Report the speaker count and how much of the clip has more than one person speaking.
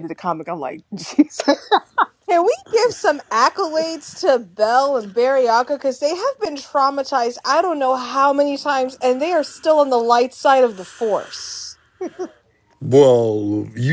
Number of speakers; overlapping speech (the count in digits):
3, no overlap